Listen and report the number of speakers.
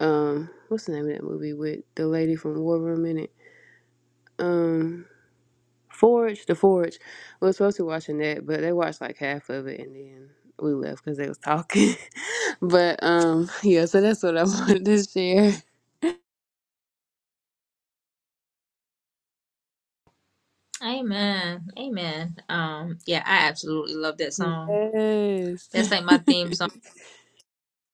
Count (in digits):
2